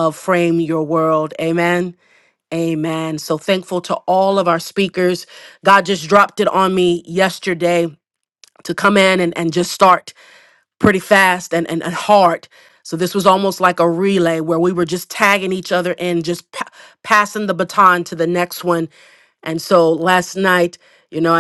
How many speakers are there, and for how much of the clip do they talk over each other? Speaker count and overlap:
1, no overlap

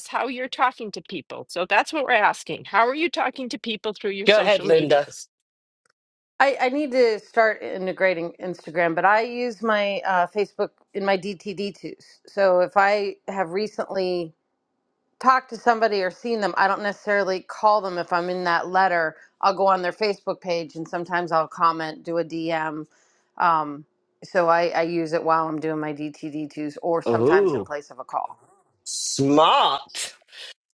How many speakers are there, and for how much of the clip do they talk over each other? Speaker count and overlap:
3, about 4%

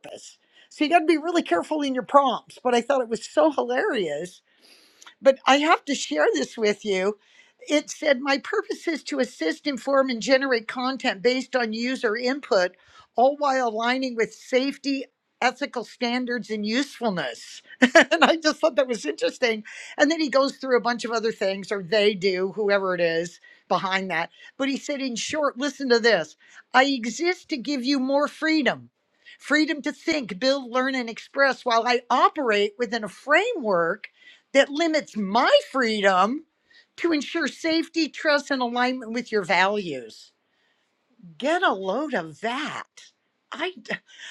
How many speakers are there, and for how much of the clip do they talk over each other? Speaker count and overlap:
1, no overlap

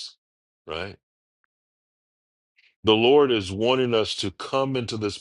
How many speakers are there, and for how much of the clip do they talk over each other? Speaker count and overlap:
1, no overlap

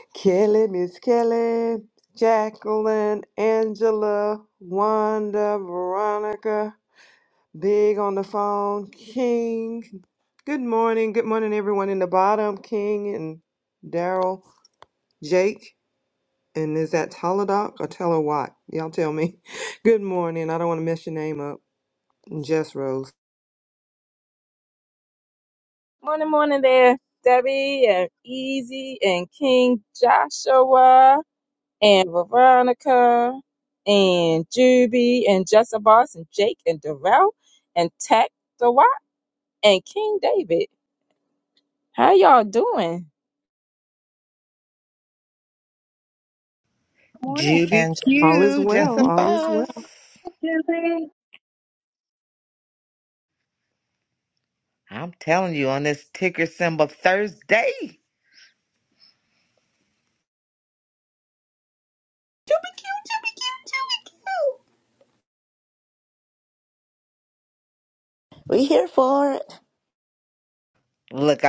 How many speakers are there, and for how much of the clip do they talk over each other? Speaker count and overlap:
6, about 3%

